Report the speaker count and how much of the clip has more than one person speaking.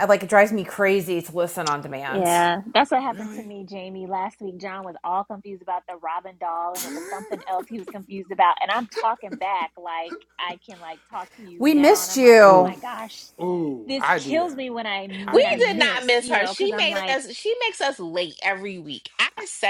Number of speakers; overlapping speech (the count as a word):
four, about 22%